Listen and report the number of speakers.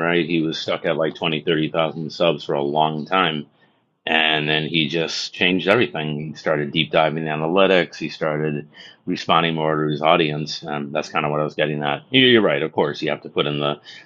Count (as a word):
one